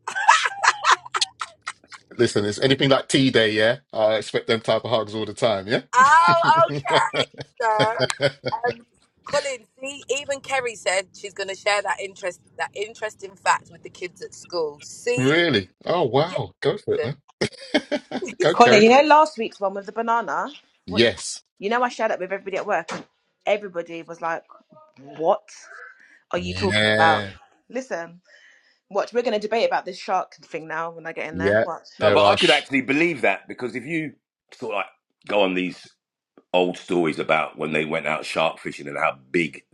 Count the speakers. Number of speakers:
four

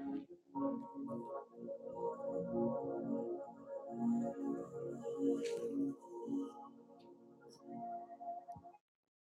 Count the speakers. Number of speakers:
zero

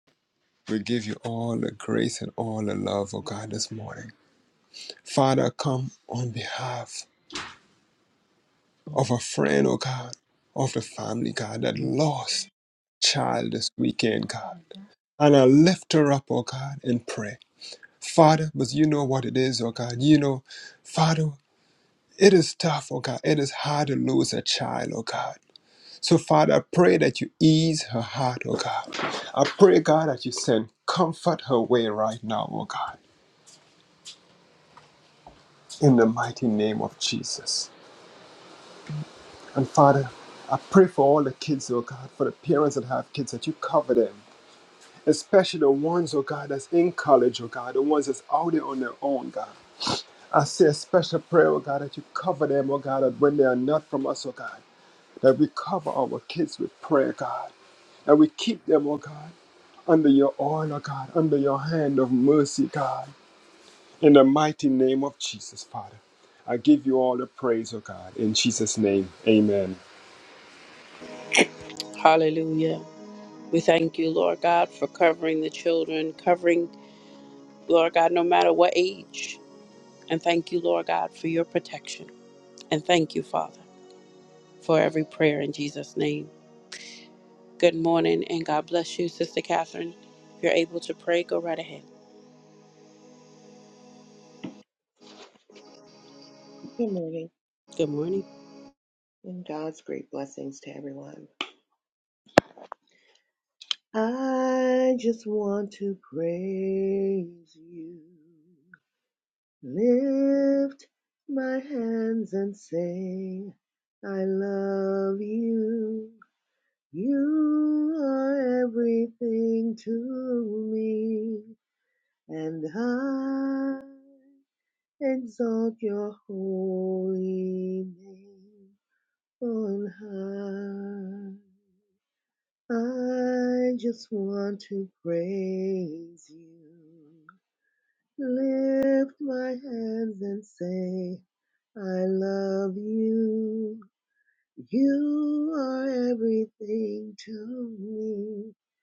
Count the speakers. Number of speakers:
three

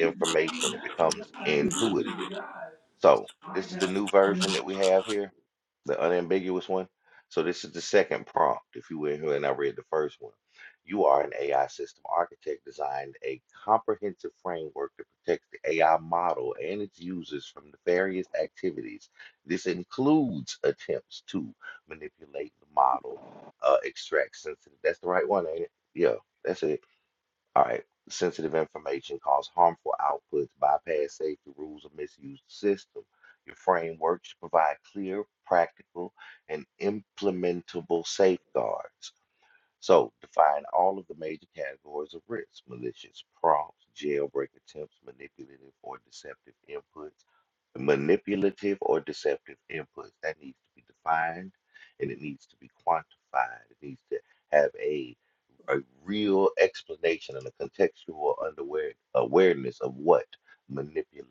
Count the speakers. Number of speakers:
one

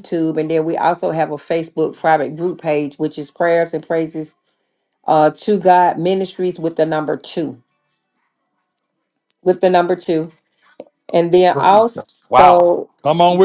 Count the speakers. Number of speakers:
two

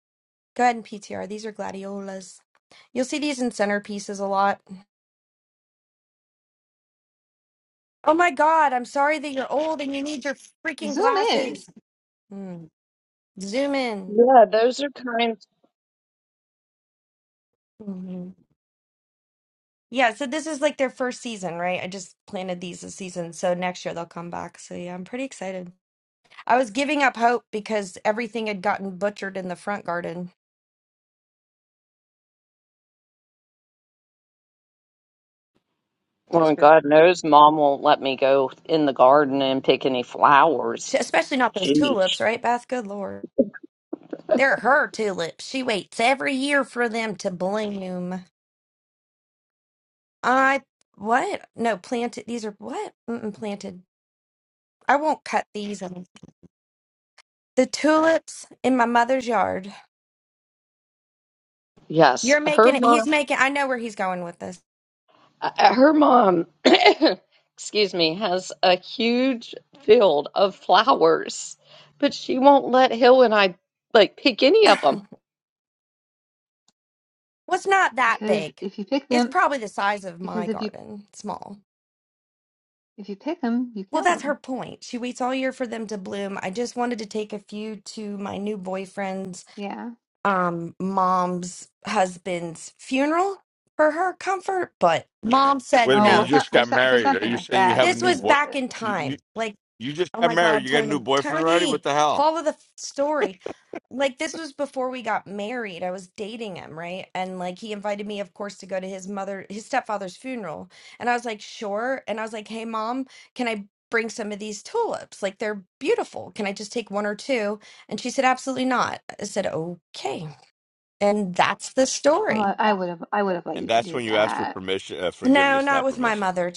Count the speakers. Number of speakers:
four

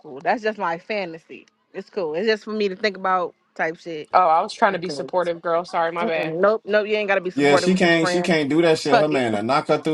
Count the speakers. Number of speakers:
three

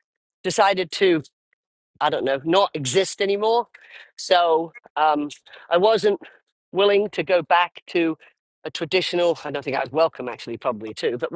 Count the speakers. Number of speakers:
one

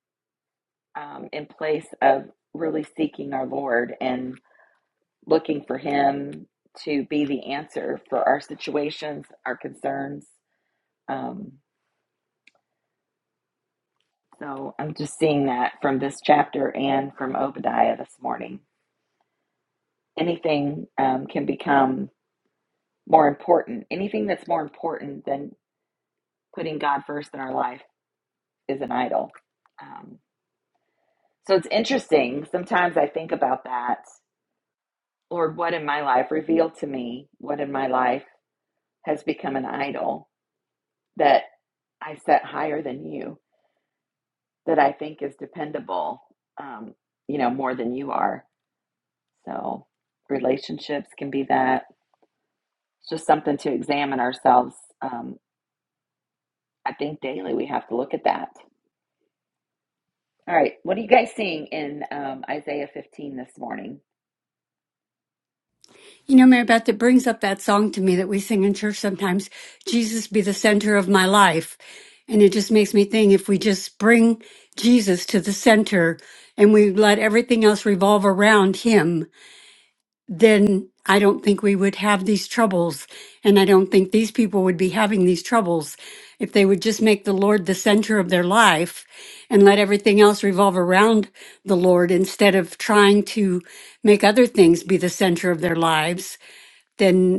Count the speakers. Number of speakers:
two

